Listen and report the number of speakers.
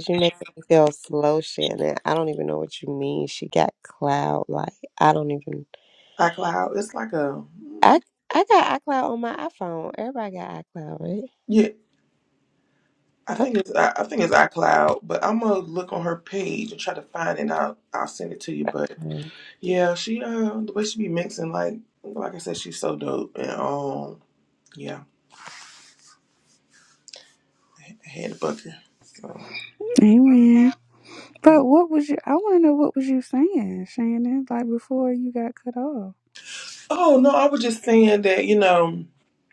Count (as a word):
three